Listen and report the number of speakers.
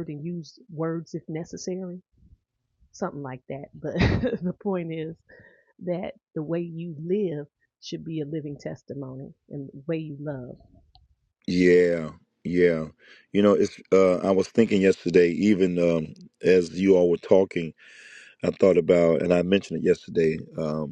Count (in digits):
2